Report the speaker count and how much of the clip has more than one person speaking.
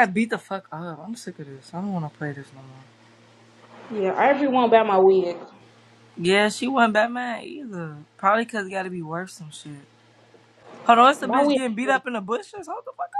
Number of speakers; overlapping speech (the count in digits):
2, about 3%